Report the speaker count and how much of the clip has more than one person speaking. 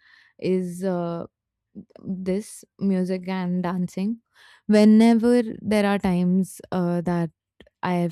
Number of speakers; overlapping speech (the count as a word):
one, no overlap